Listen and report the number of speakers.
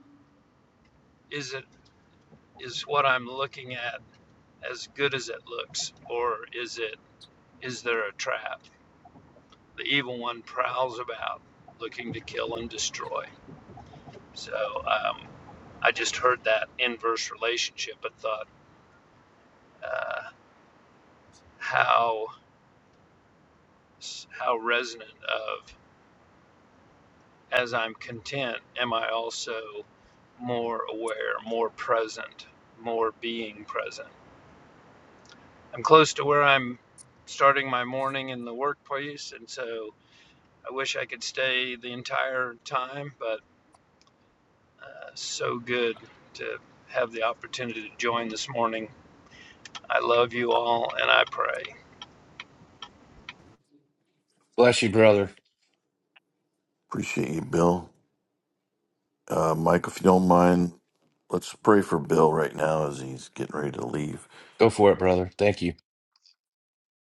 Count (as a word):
three